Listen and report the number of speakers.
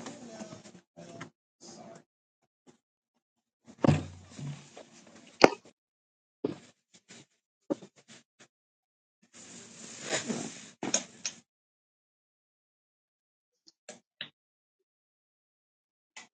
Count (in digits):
0